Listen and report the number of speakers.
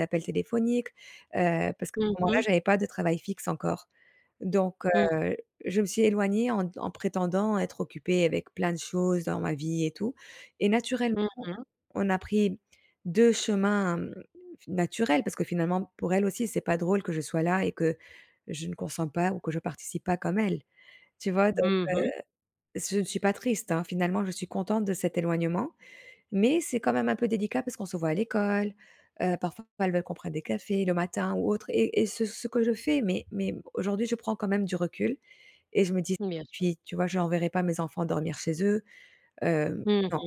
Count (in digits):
2